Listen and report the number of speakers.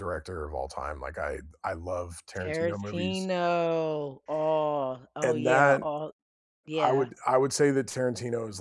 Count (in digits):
2